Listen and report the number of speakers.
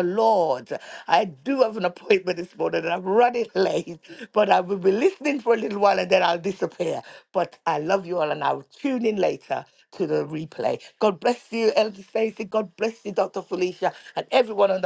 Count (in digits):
1